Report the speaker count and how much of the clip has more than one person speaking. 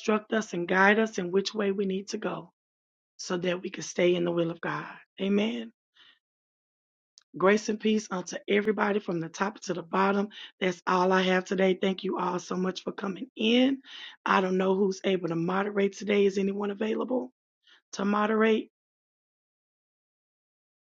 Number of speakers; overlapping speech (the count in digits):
1, no overlap